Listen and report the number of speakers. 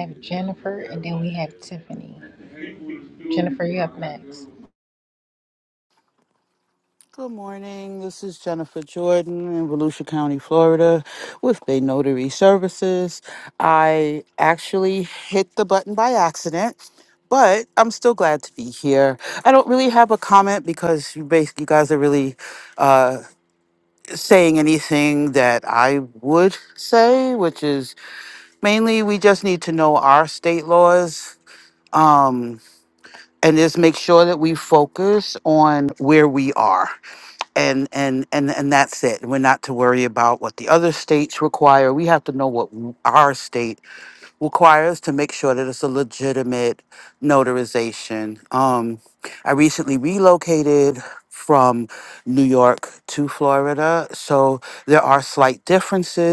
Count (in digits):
2